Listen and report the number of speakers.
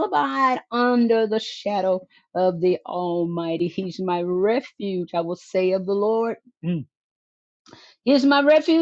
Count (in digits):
1